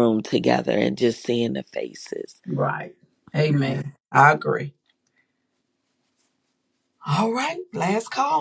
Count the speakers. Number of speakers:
2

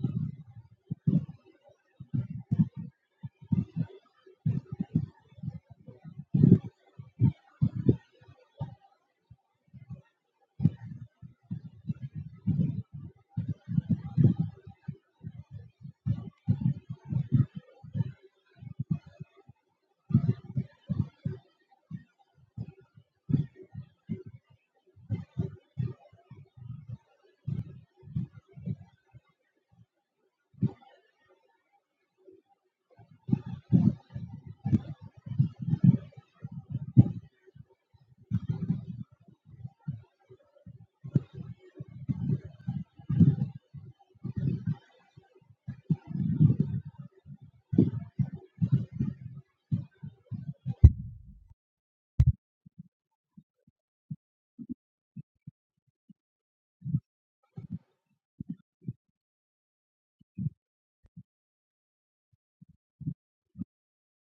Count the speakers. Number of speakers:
0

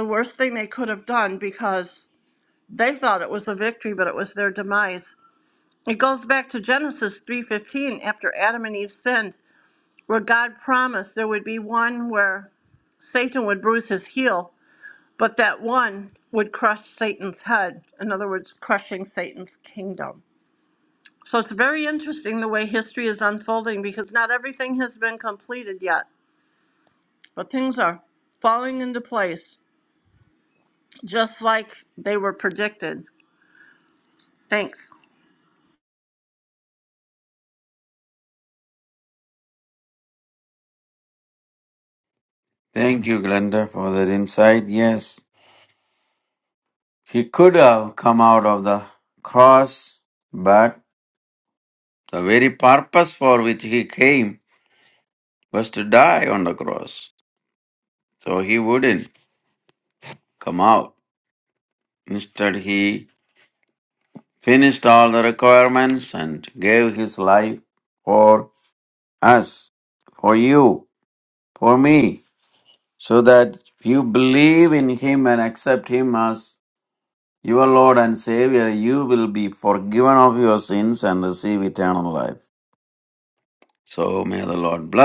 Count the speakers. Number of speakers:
2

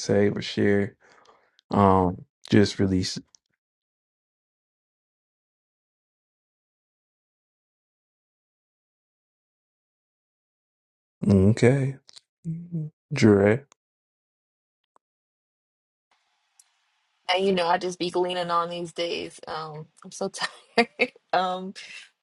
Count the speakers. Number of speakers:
2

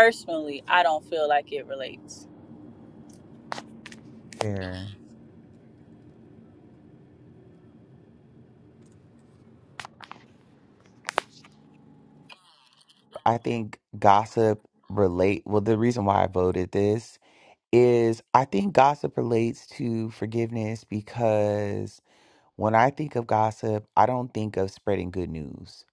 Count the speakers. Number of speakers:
2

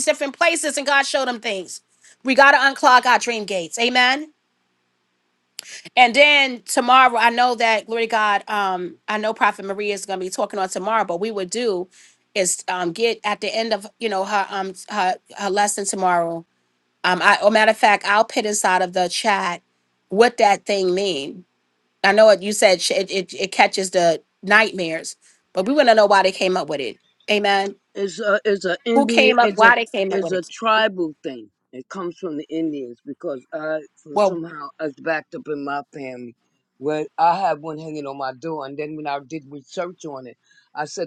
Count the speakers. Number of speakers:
2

